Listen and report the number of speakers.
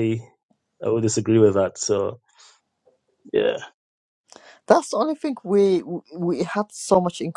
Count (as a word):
two